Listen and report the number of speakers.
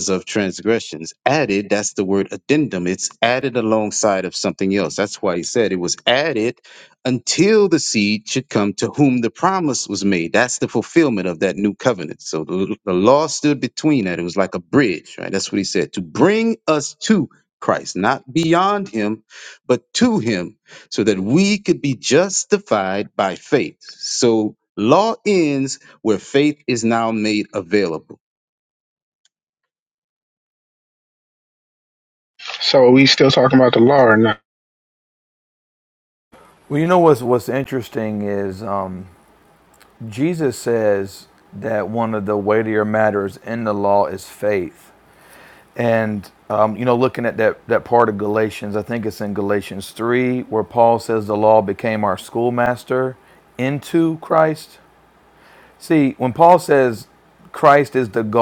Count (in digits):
3